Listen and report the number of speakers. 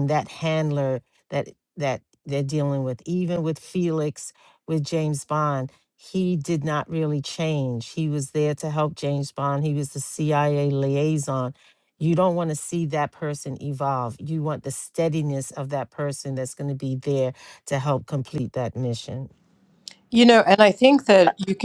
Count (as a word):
two